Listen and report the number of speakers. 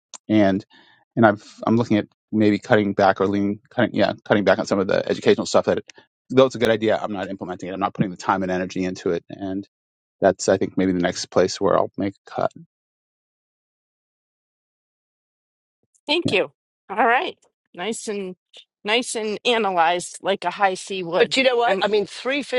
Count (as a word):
three